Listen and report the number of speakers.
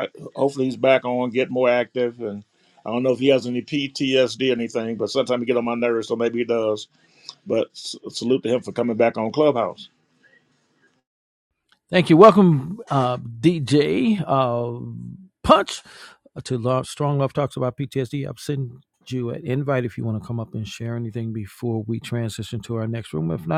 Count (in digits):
2